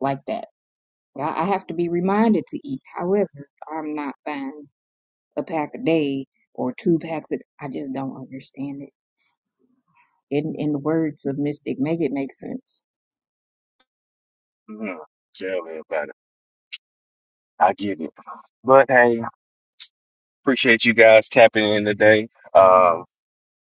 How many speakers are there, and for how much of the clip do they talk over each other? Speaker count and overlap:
2, no overlap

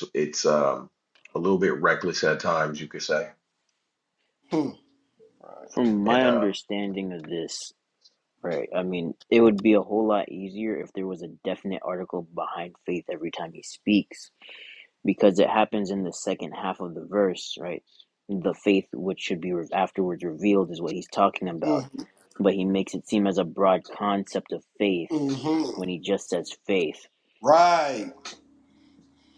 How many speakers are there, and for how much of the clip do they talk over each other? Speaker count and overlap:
3, about 3%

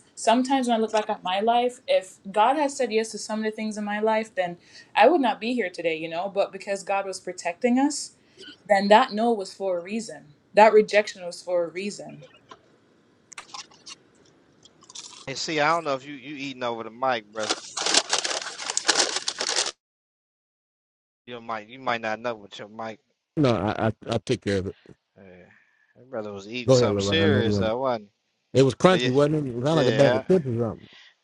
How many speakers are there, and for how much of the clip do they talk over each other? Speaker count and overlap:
3, about 6%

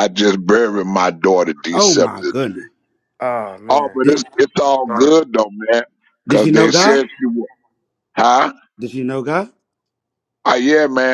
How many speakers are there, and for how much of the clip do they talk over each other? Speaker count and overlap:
3, about 23%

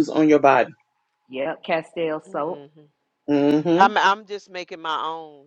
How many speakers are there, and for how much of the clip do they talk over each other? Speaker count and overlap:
3, about 8%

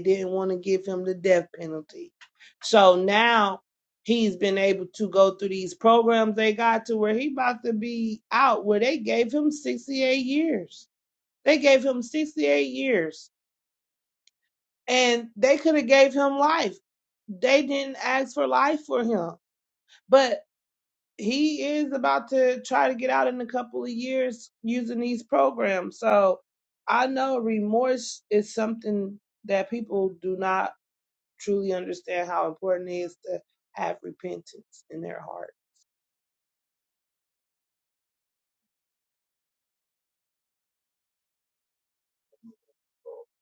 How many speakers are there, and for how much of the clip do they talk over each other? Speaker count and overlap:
1, no overlap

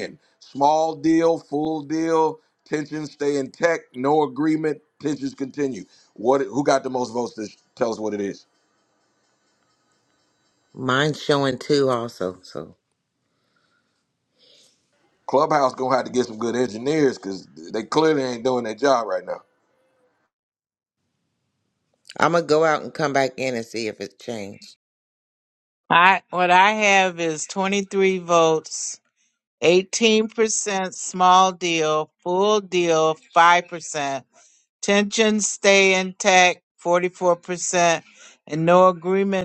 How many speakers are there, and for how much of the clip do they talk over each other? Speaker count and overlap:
3, no overlap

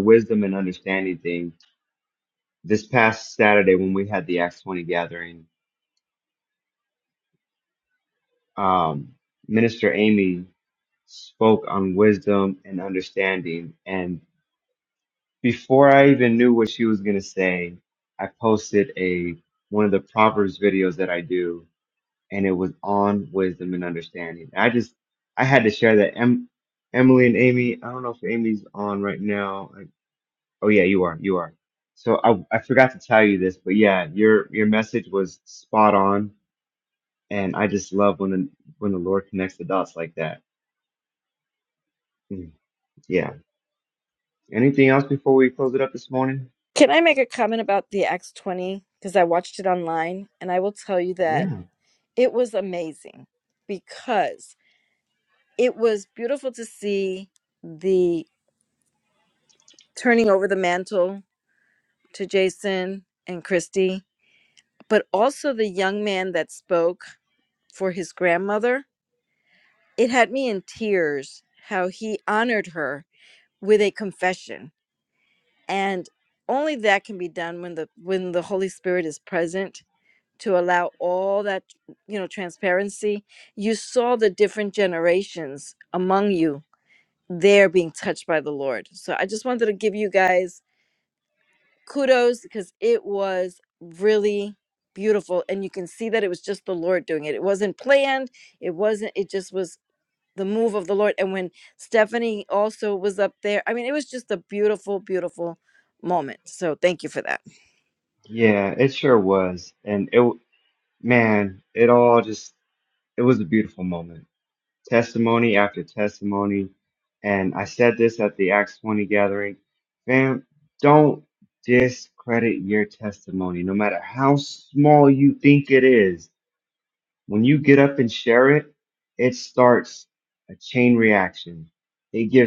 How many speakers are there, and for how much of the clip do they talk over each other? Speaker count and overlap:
2, under 1%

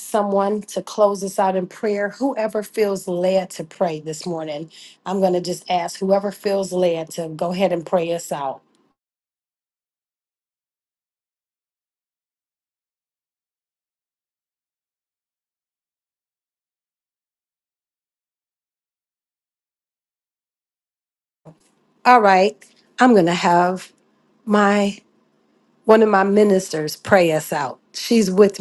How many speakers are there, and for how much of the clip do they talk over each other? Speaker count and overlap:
1, no overlap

